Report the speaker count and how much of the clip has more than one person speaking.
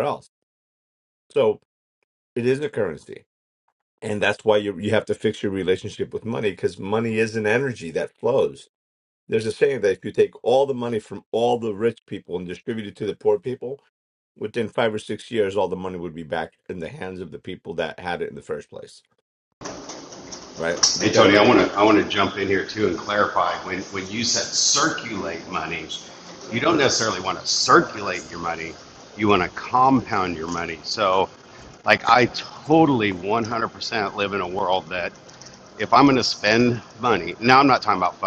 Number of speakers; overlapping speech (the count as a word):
two, about 1%